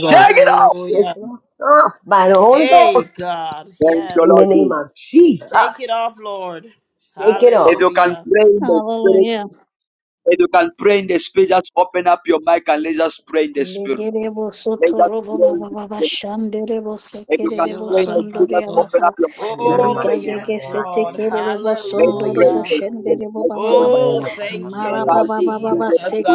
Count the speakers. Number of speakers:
4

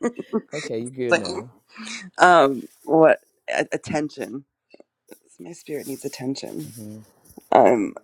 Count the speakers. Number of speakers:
2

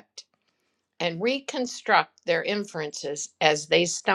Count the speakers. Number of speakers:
1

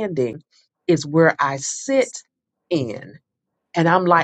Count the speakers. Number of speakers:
1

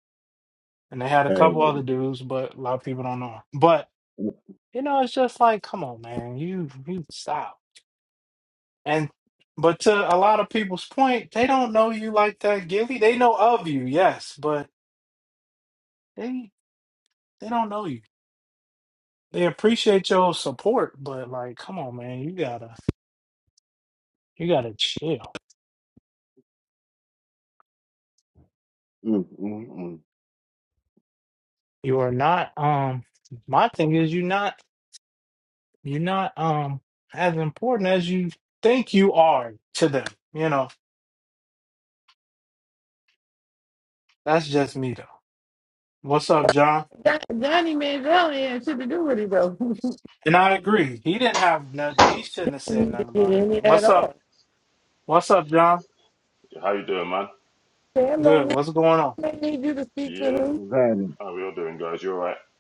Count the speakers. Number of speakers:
4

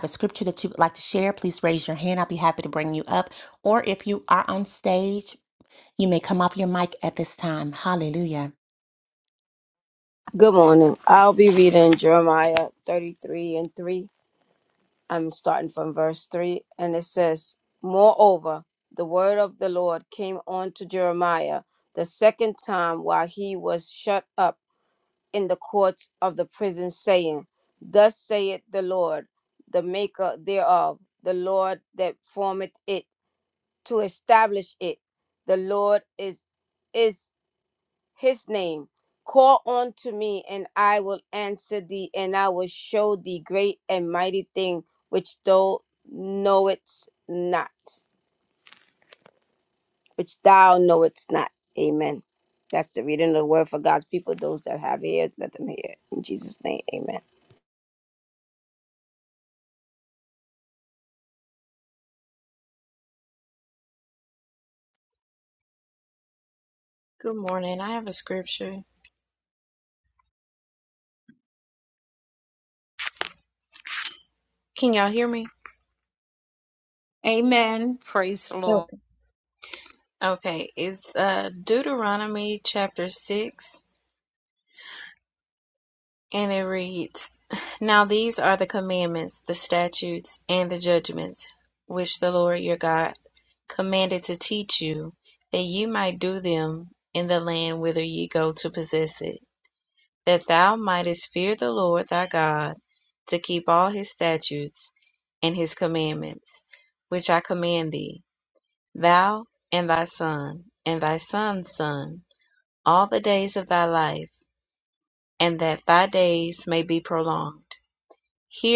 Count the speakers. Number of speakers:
4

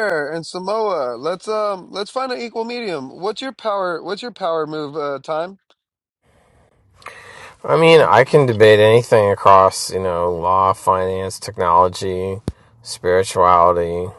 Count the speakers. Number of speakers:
2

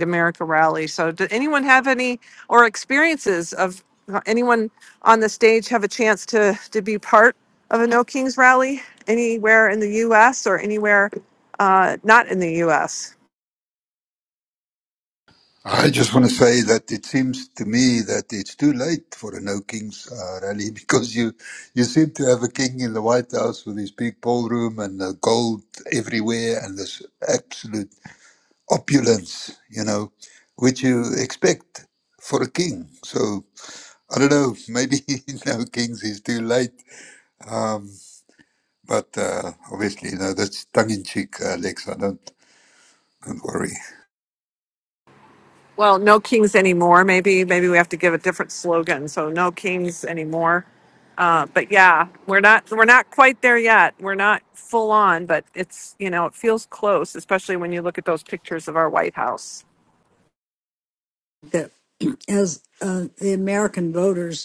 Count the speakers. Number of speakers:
3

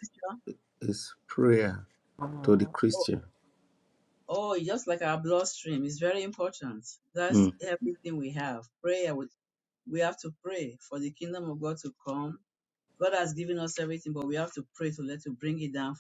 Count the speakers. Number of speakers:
2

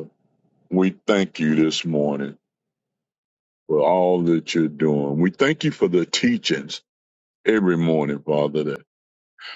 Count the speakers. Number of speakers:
1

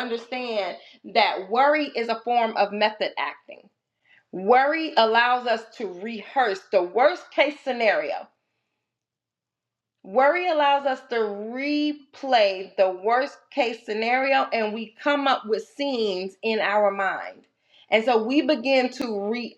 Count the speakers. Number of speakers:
1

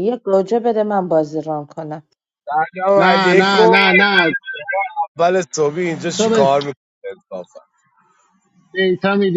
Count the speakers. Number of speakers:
3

